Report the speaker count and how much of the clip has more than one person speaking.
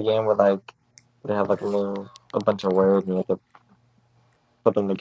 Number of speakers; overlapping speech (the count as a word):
one, no overlap